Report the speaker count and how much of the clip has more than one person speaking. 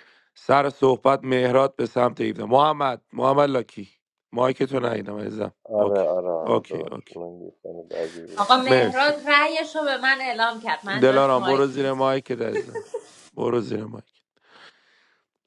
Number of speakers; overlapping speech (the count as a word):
three, about 16%